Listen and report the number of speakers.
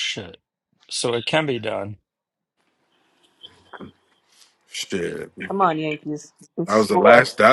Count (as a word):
three